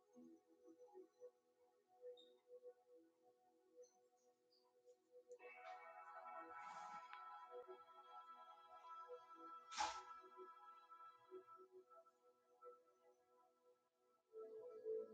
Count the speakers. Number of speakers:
0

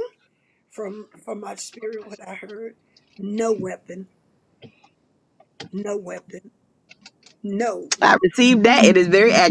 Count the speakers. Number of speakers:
2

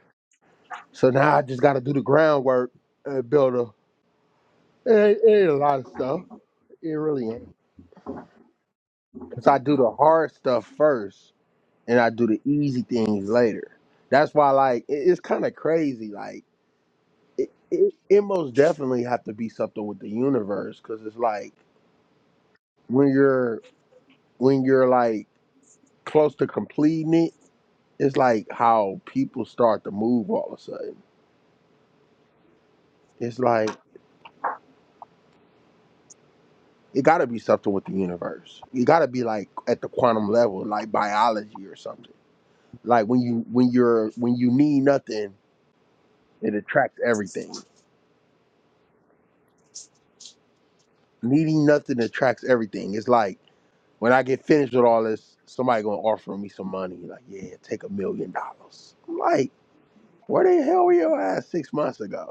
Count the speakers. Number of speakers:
1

